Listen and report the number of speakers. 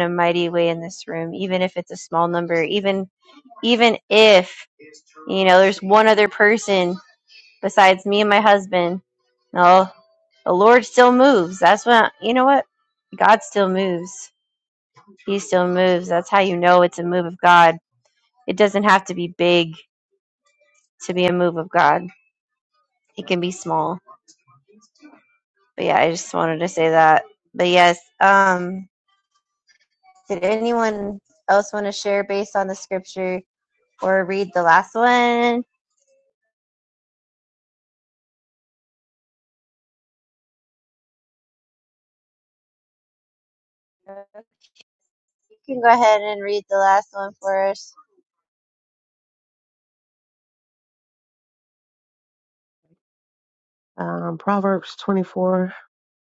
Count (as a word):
two